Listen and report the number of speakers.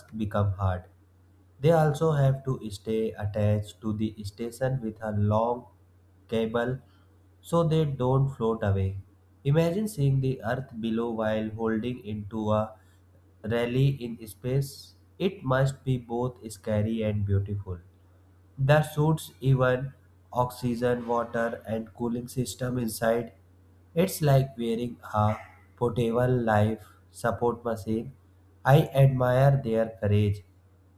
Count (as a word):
one